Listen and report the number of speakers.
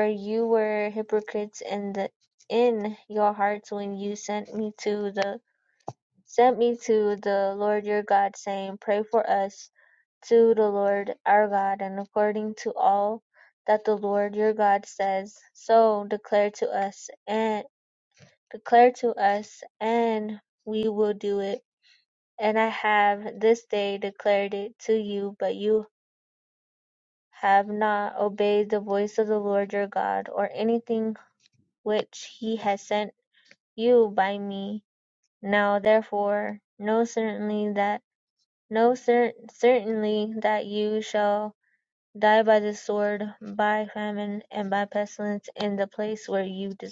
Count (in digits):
1